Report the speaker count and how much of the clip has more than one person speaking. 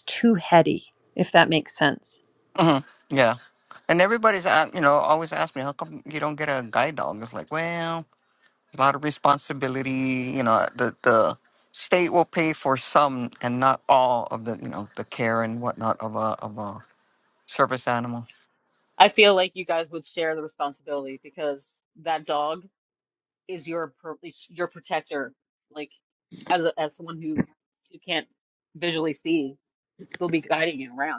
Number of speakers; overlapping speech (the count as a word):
three, no overlap